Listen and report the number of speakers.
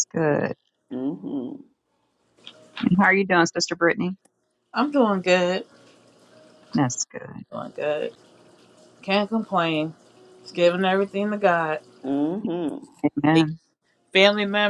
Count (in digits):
3